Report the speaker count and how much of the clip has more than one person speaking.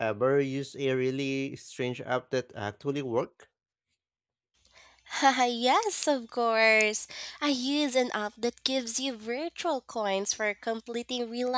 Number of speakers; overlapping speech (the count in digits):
2, no overlap